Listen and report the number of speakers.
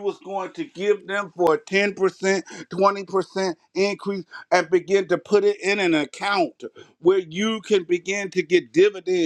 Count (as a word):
one